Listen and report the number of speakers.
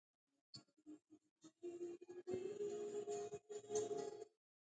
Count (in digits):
0